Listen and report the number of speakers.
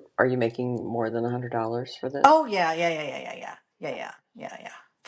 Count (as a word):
two